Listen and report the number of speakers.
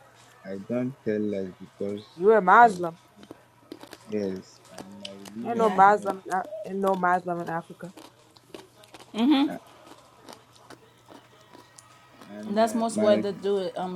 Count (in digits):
3